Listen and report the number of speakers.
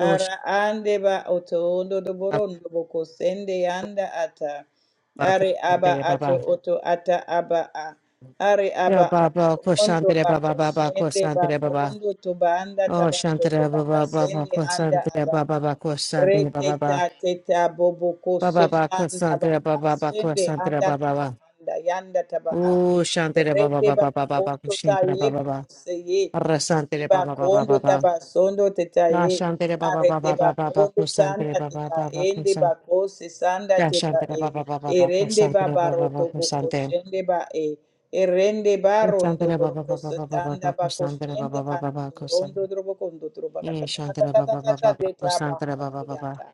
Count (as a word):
two